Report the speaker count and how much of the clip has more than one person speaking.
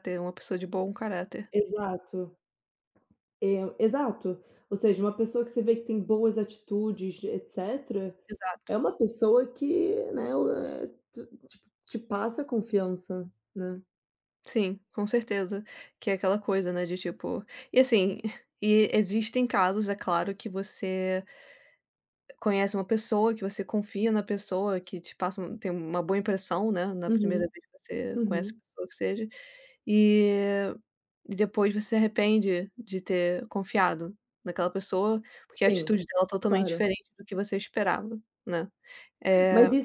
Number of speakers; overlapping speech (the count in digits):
2, about 4%